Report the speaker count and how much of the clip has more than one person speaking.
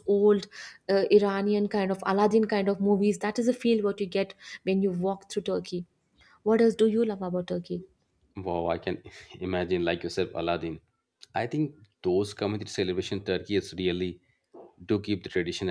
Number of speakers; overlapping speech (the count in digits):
2, no overlap